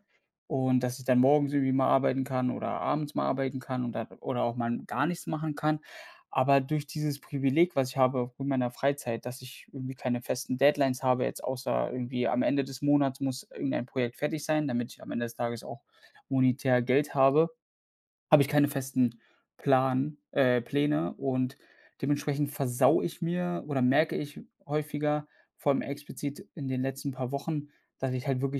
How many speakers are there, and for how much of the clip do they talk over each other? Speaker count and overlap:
1, no overlap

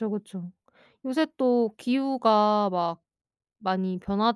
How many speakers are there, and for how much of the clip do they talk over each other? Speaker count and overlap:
1, no overlap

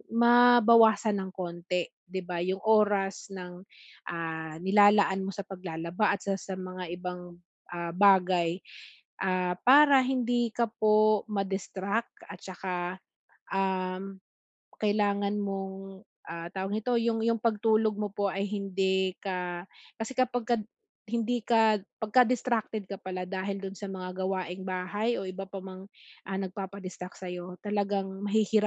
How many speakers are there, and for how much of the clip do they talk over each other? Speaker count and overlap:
1, no overlap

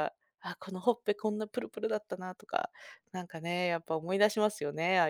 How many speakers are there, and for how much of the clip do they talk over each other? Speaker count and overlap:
1, no overlap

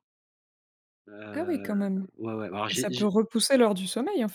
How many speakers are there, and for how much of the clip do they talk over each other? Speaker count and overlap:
2, about 20%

